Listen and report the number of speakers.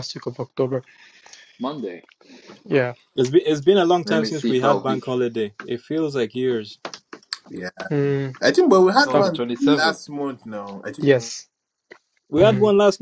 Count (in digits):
4